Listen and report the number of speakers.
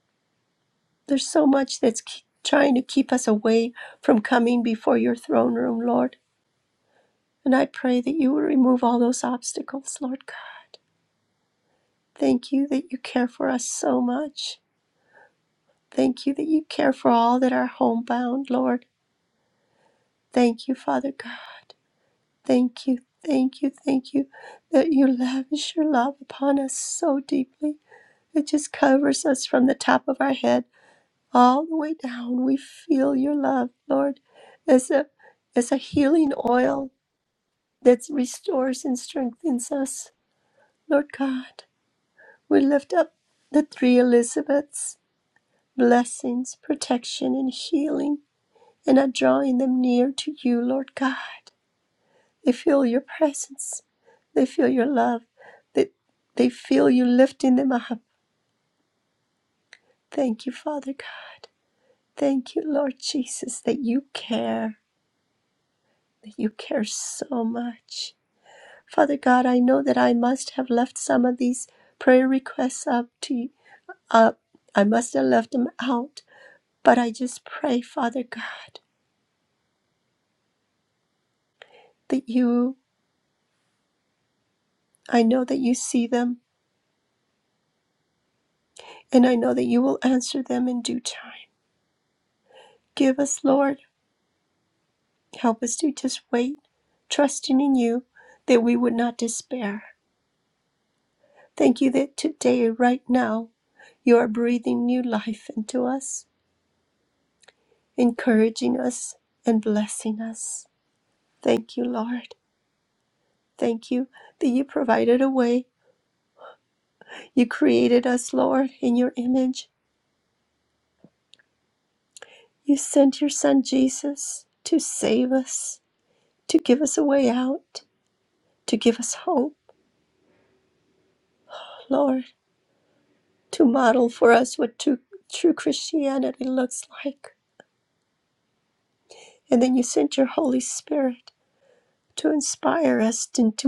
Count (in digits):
1